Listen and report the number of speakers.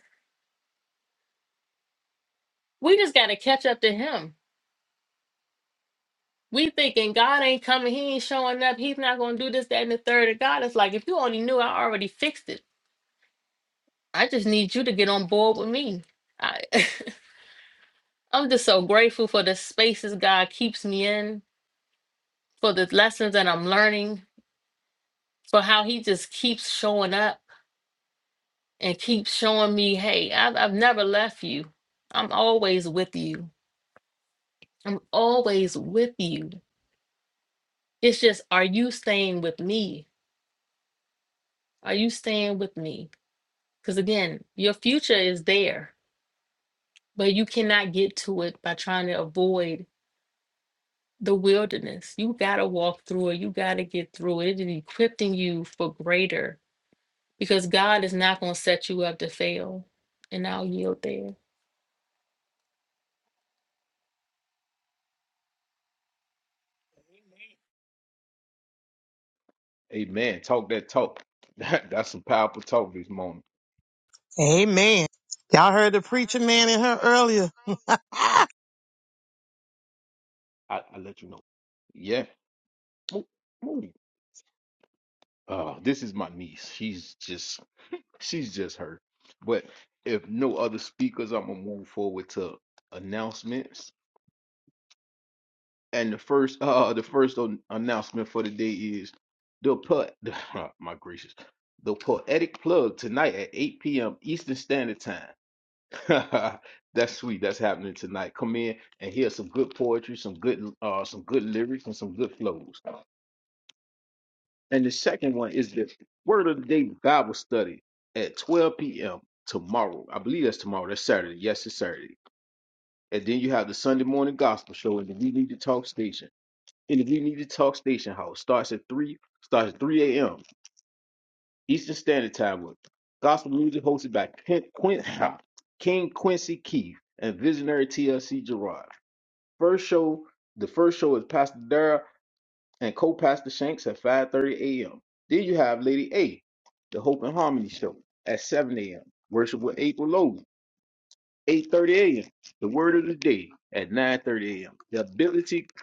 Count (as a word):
three